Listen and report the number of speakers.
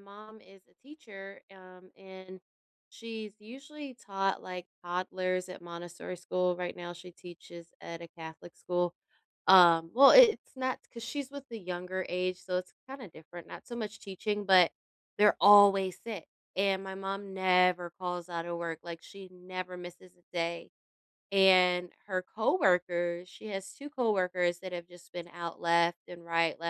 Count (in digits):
1